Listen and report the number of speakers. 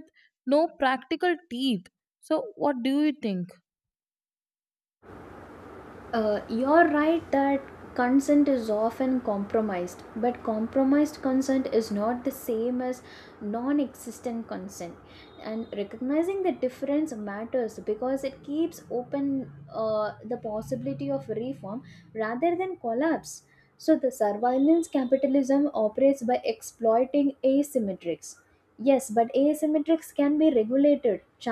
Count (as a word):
two